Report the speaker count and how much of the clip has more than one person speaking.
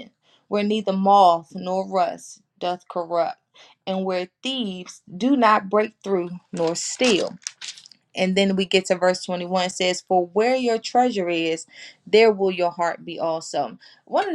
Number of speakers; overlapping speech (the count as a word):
one, no overlap